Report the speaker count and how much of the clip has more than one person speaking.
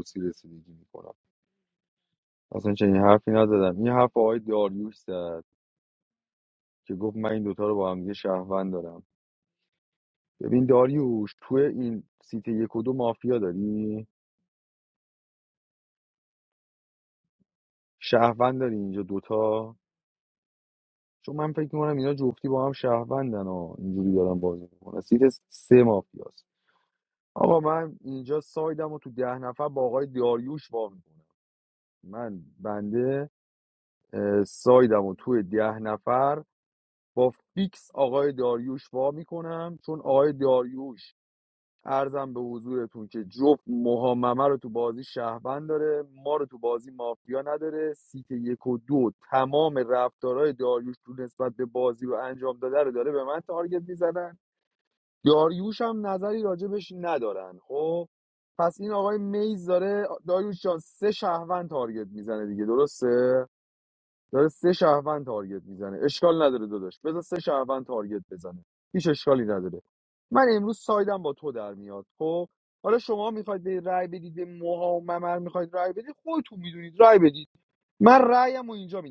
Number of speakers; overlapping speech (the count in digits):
1, no overlap